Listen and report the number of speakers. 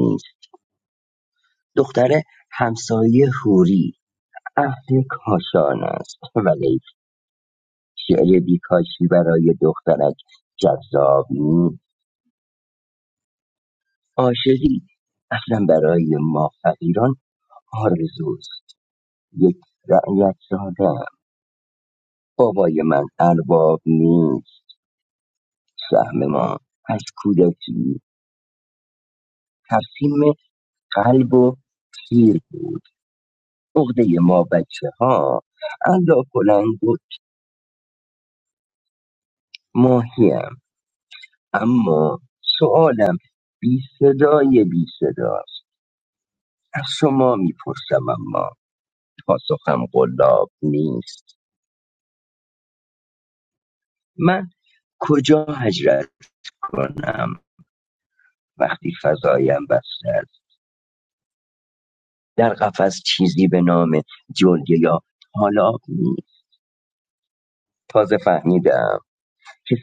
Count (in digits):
1